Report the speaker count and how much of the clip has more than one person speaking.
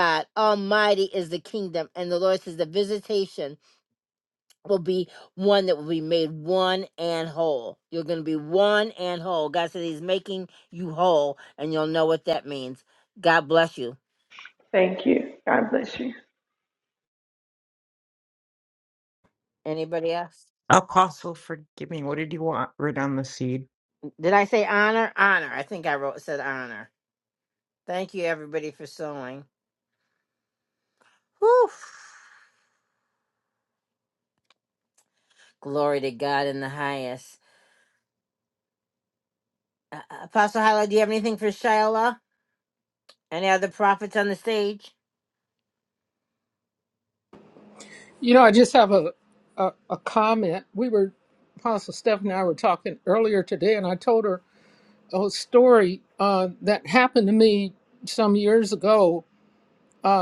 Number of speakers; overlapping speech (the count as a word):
four, no overlap